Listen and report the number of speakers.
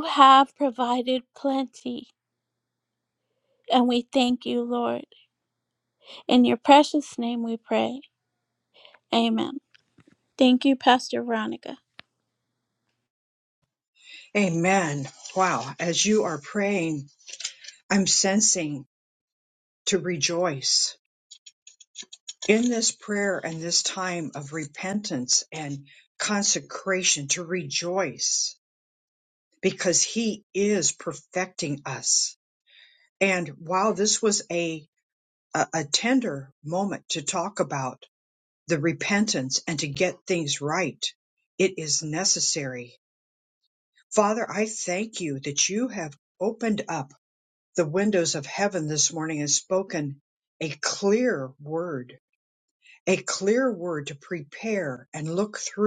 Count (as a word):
two